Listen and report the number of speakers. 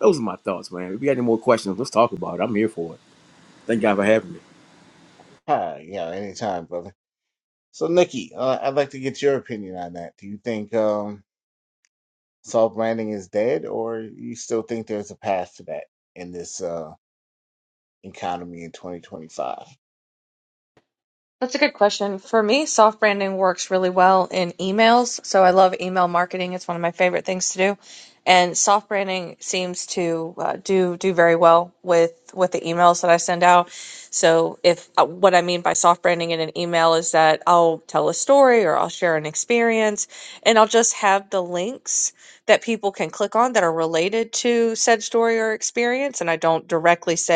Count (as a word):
three